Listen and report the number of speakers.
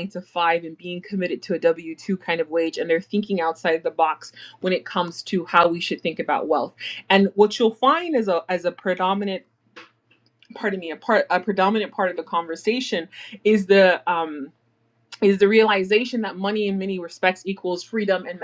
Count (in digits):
1